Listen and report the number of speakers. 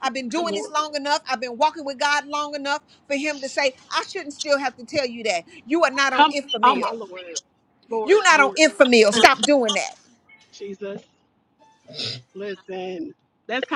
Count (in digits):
2